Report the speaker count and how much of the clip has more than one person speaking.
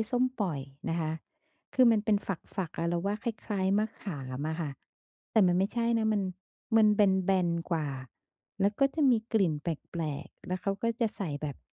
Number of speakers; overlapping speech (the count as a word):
one, no overlap